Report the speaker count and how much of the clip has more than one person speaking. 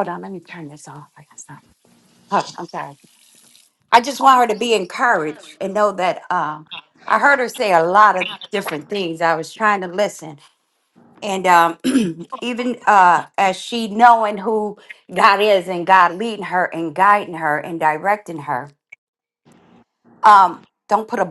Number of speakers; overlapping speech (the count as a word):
one, no overlap